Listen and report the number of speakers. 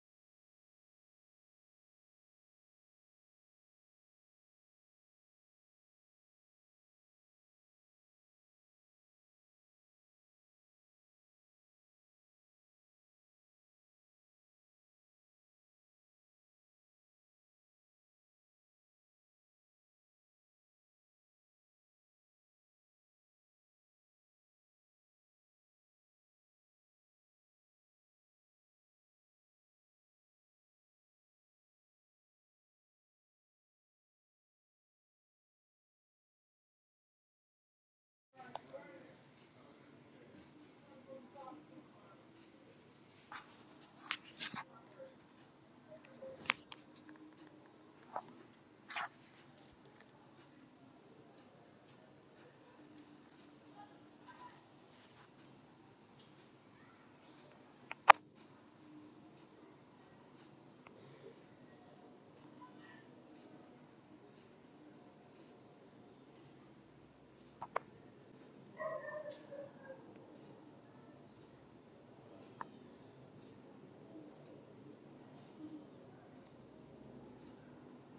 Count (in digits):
0